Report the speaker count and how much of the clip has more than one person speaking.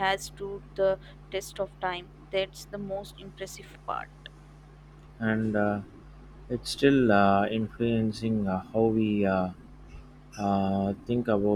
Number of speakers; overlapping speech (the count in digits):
2, no overlap